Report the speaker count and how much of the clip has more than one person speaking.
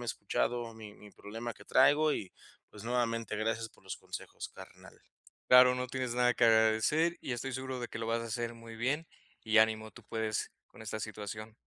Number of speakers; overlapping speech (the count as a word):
two, no overlap